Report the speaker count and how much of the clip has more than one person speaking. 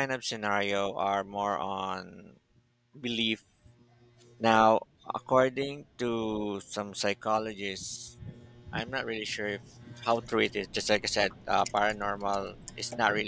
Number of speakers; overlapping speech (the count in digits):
1, no overlap